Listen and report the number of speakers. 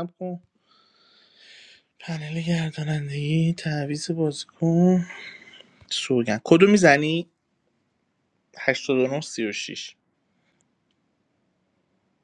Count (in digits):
1